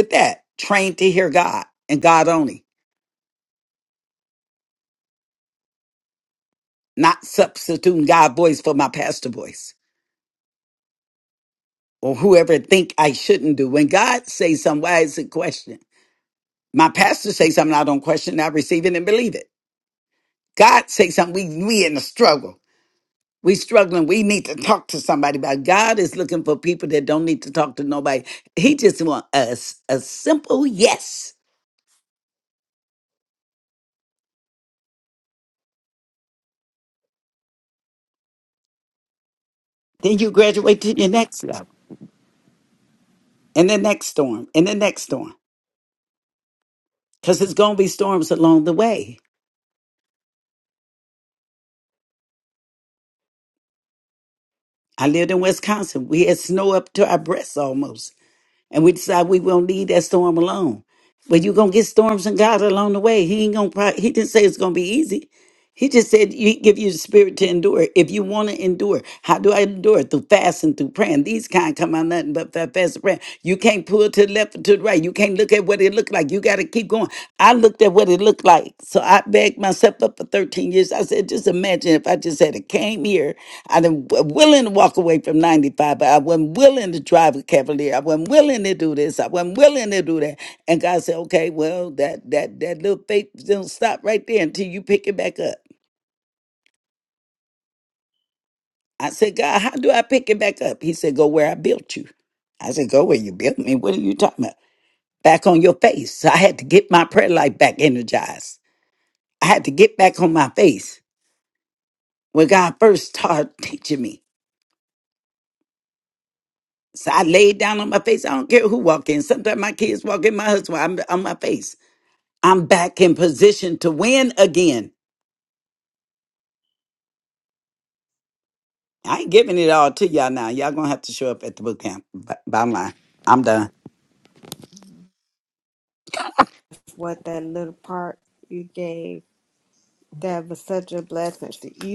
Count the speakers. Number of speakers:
two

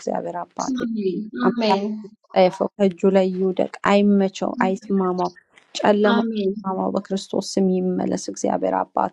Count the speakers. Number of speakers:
two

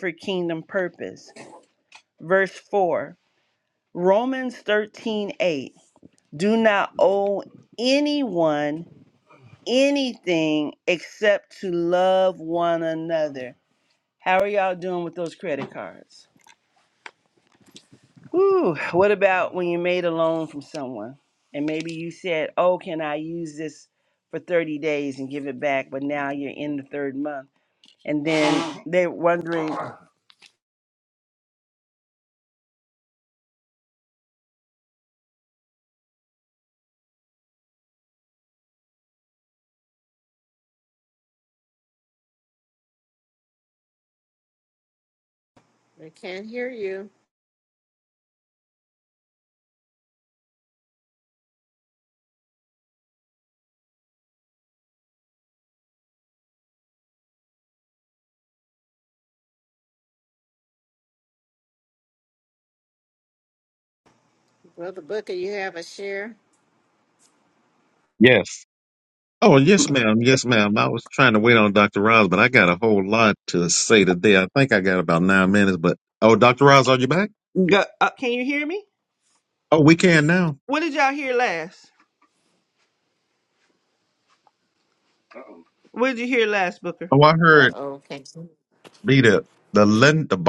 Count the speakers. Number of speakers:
three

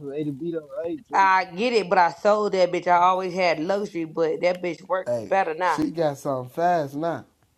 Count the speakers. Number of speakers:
three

